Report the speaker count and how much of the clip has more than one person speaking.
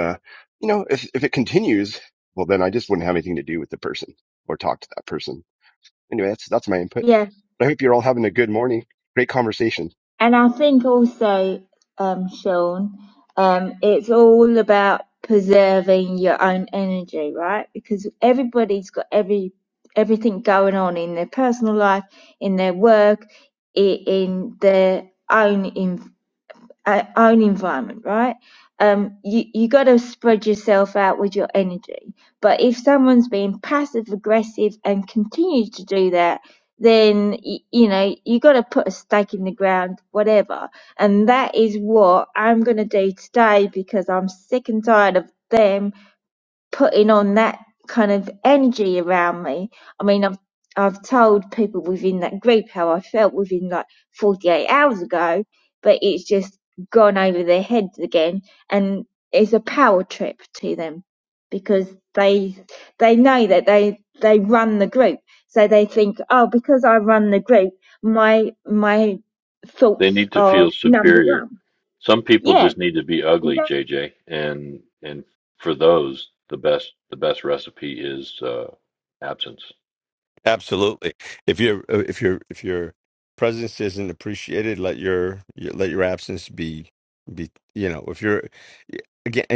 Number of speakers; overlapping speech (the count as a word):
four, about 2%